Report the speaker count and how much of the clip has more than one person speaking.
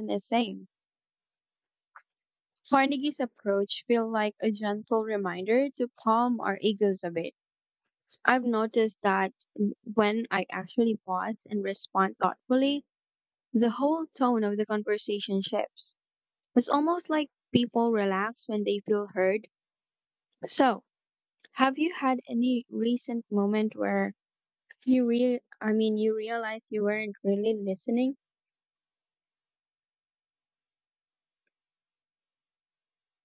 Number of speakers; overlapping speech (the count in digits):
1, no overlap